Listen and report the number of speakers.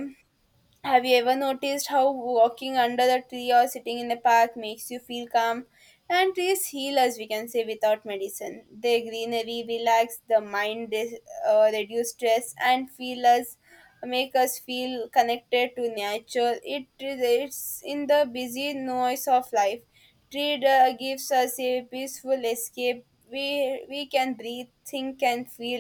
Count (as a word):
one